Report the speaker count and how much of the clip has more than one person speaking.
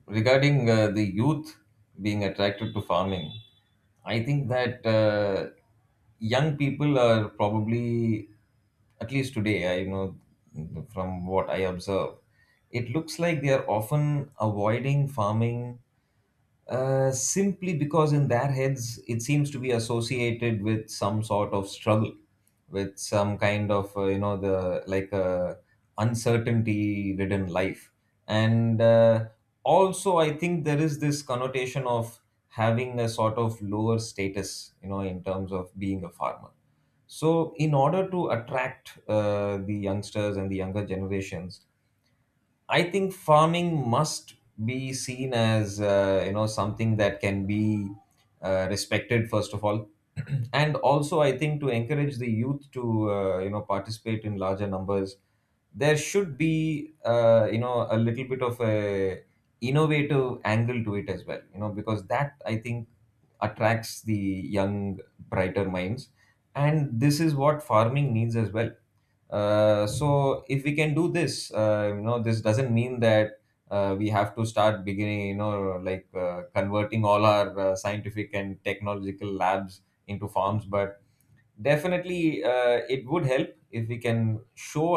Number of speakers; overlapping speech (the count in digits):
1, no overlap